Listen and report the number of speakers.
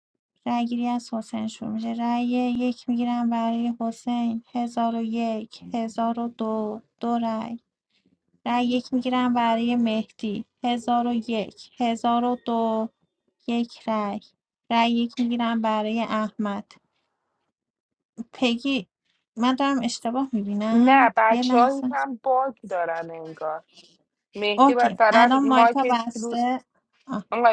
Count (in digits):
2